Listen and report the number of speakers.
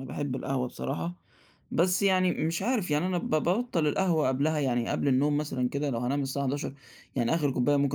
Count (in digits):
1